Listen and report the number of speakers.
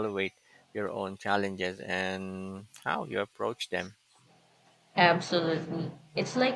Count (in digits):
2